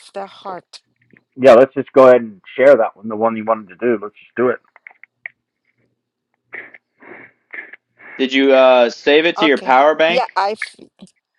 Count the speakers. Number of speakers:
3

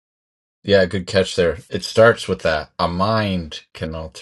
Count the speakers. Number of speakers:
1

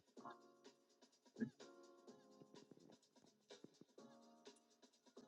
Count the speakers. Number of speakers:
0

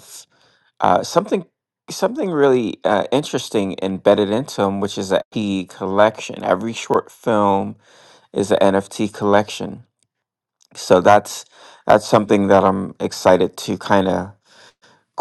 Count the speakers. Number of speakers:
1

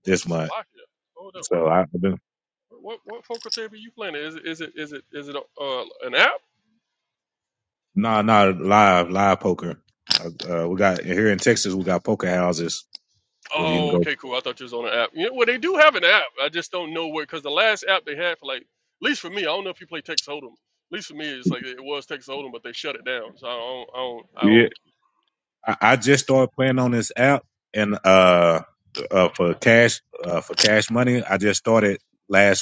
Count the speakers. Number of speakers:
2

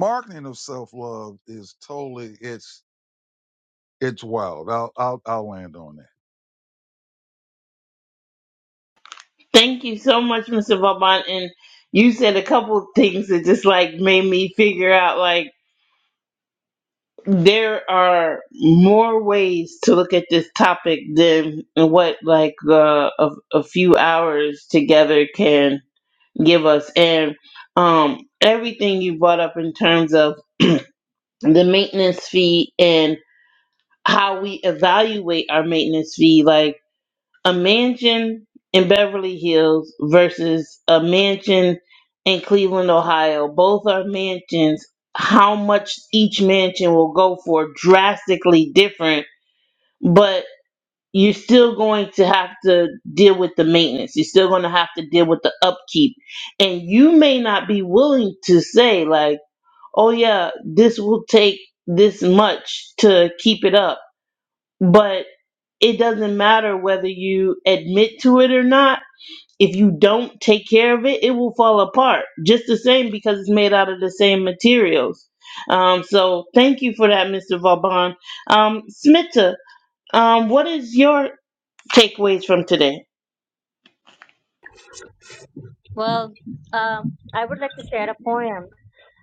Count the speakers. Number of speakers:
3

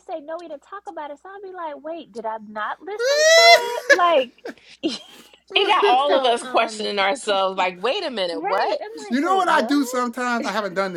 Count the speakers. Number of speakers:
3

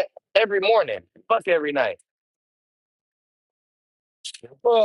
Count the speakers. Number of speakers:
1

